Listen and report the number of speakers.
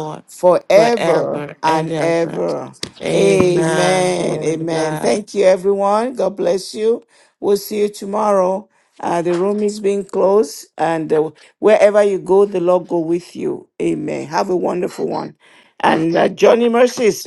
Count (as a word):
two